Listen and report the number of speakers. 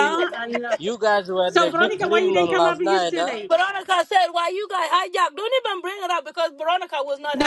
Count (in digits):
3